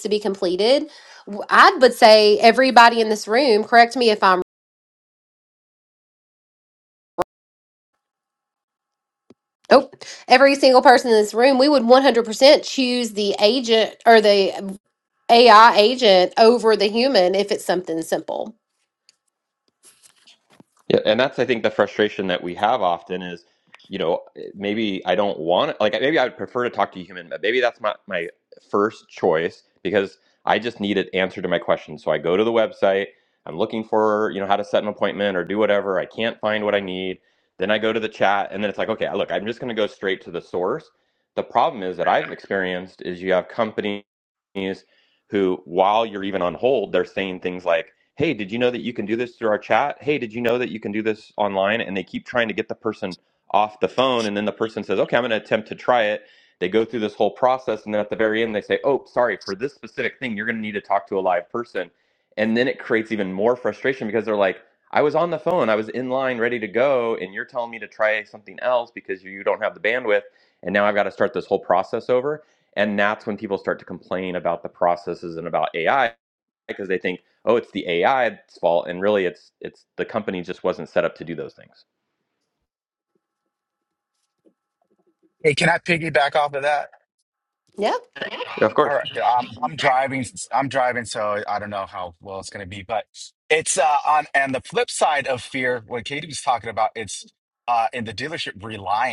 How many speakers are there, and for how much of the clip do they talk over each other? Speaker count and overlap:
3, under 1%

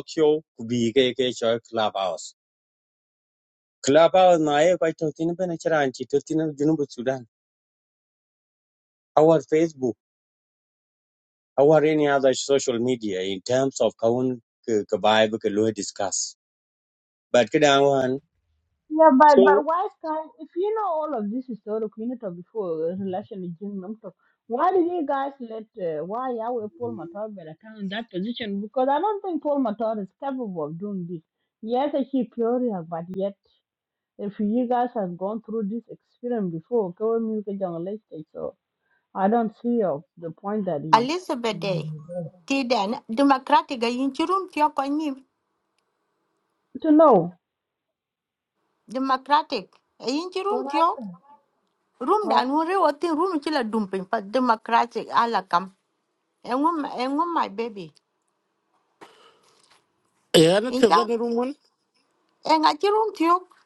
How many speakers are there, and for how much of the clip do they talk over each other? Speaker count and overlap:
4, about 1%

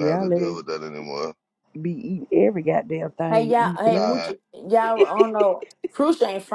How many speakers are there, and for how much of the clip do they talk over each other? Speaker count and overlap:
3, about 24%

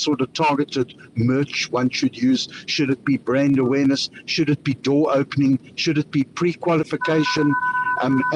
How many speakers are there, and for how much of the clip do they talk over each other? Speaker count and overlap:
1, no overlap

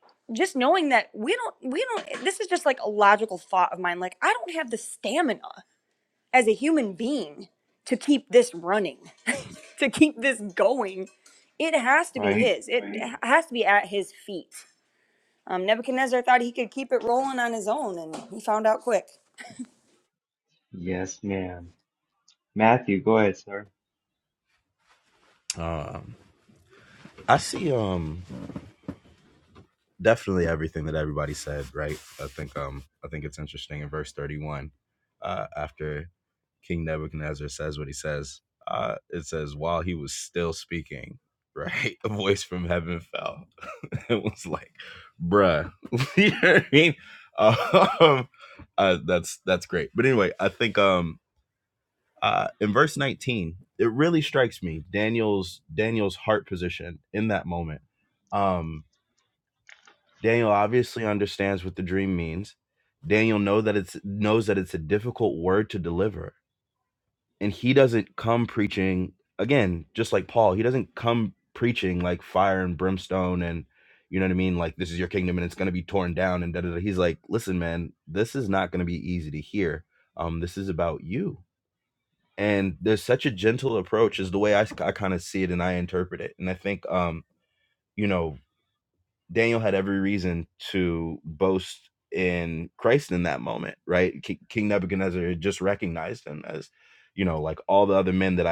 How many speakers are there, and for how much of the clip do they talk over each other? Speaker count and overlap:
3, under 1%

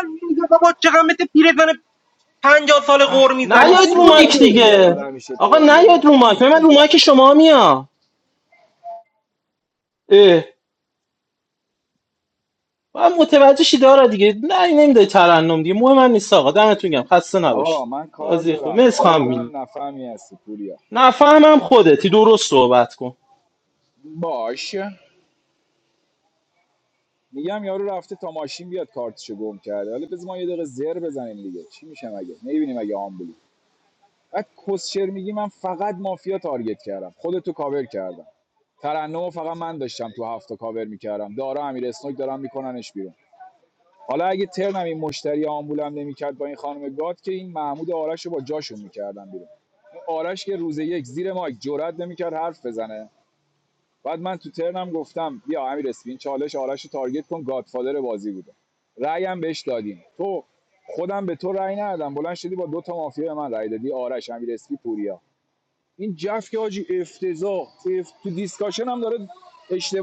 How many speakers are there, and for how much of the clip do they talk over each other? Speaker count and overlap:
3, about 7%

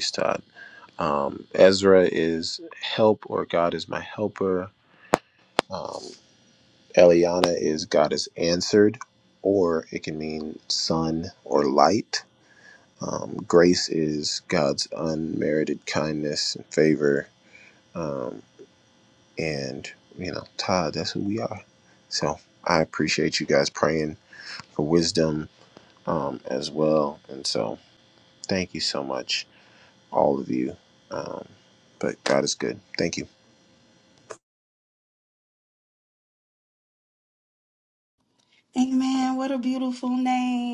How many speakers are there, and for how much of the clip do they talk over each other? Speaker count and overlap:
2, no overlap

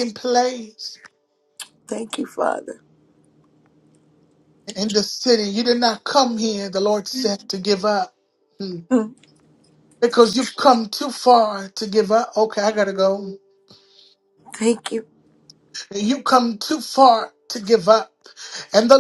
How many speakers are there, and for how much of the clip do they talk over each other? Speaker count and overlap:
2, no overlap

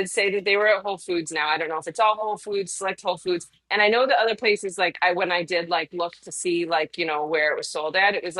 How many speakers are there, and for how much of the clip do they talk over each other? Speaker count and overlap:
1, no overlap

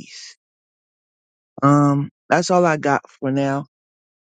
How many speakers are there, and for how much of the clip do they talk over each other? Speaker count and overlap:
1, no overlap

